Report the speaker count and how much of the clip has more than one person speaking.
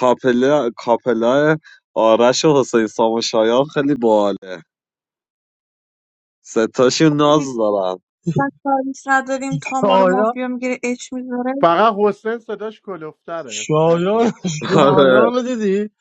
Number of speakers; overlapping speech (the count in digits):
4, about 14%